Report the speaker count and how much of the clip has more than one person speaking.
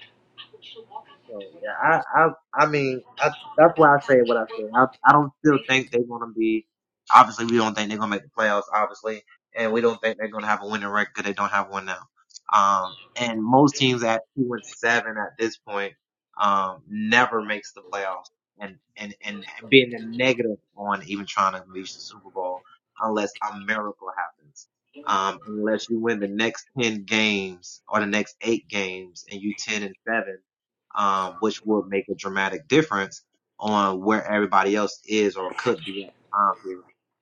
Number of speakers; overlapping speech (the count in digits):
1, no overlap